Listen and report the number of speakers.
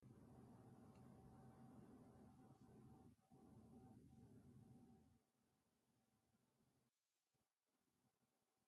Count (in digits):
0